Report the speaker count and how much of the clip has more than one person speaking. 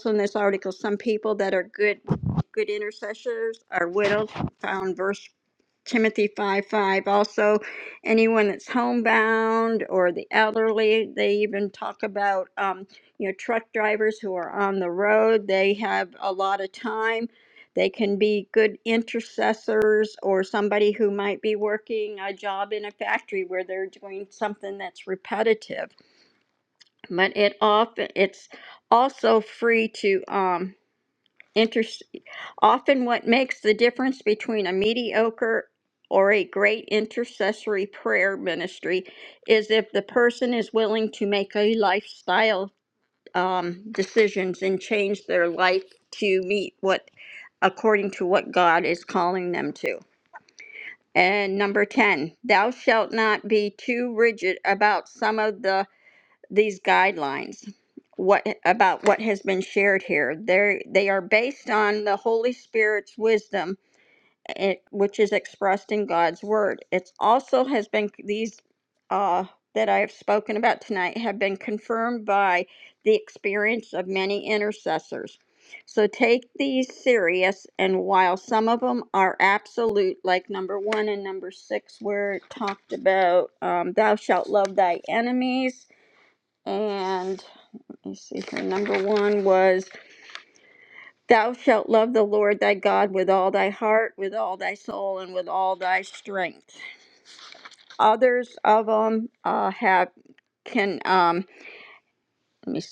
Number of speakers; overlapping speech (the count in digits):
1, no overlap